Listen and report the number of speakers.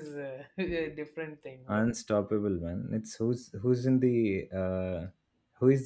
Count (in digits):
2